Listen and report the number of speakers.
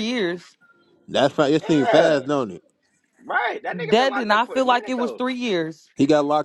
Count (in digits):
3